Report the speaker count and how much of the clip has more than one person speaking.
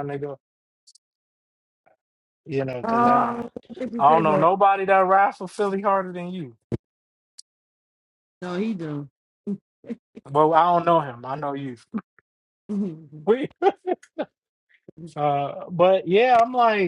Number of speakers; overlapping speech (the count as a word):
two, about 7%